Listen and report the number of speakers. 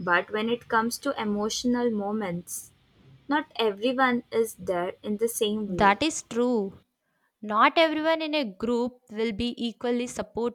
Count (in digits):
2